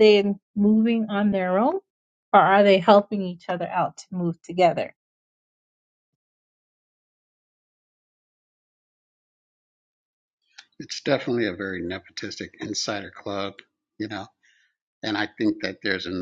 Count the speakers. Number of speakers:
two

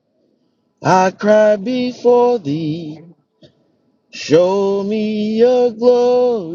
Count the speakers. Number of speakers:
one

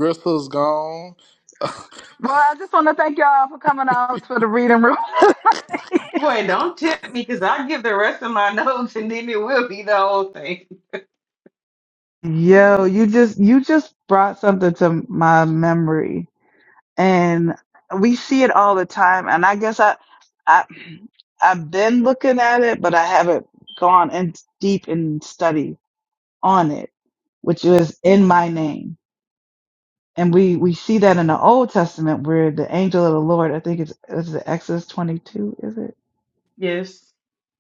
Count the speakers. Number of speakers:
three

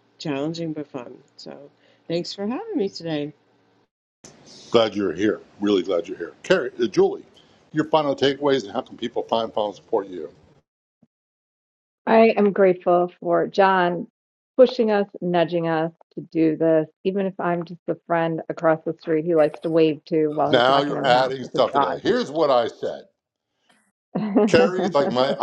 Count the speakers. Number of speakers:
three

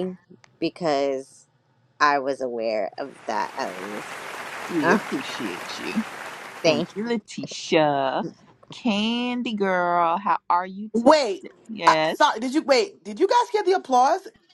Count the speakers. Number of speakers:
three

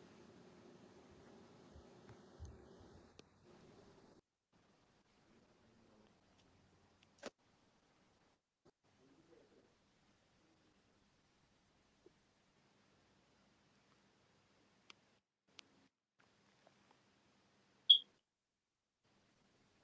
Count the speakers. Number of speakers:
zero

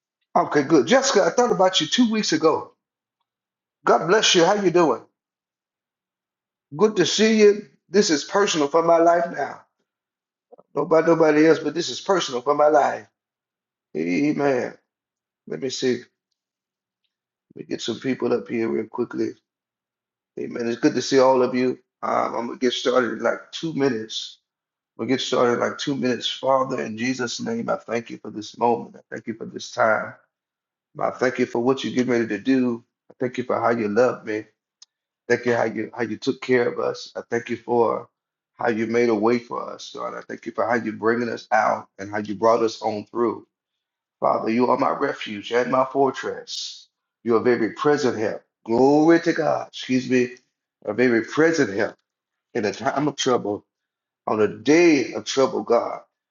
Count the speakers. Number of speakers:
one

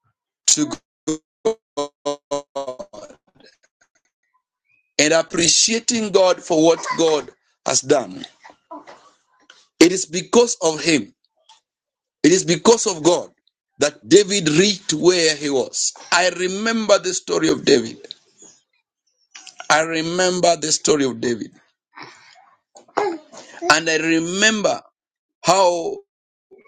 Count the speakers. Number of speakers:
one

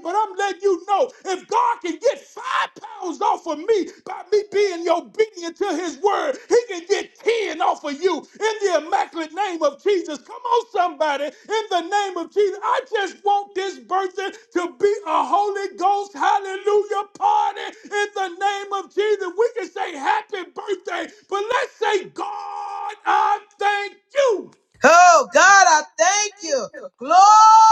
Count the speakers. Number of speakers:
two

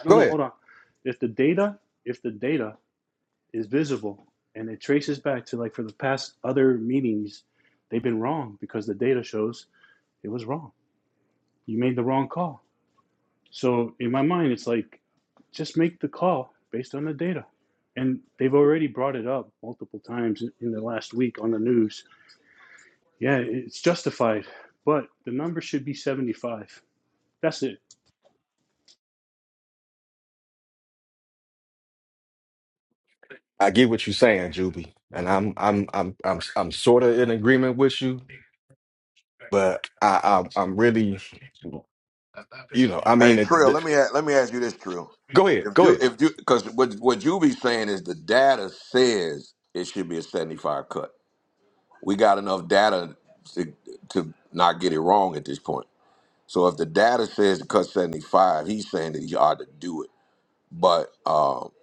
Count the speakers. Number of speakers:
three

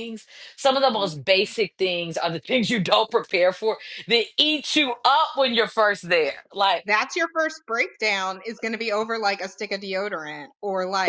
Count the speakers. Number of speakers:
two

